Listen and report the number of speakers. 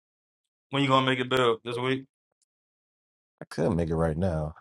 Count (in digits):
2